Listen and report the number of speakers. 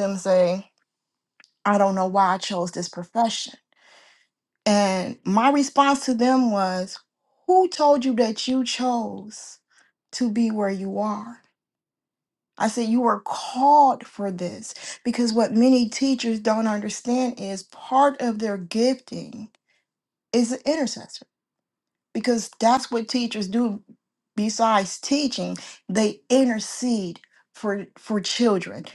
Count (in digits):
1